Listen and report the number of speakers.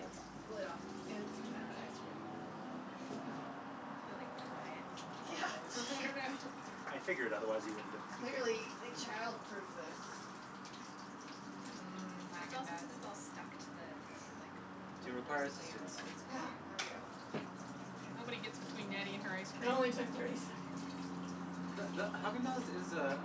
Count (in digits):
4